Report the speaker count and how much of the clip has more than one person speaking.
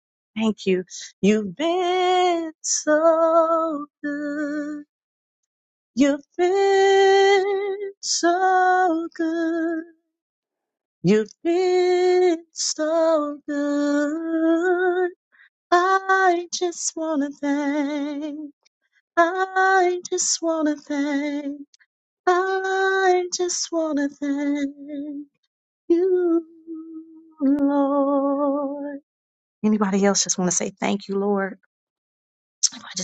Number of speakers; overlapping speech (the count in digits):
1, no overlap